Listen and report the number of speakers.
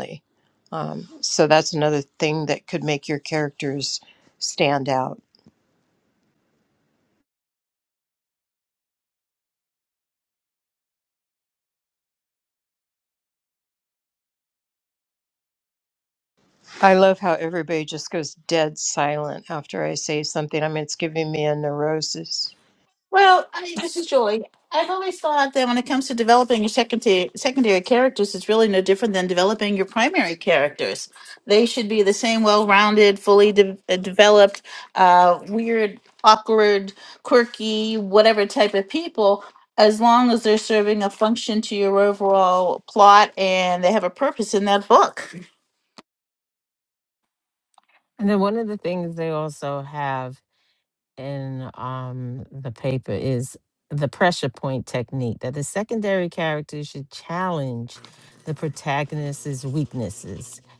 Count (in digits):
3